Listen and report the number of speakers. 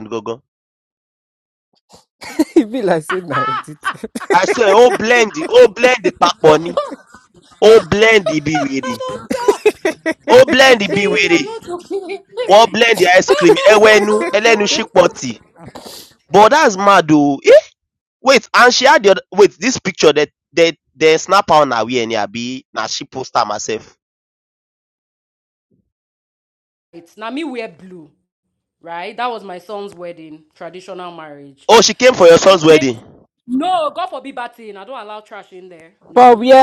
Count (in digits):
3